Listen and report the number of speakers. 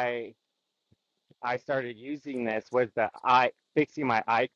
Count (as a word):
one